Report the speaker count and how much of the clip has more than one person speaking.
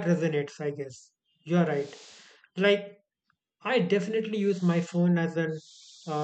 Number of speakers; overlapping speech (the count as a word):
one, no overlap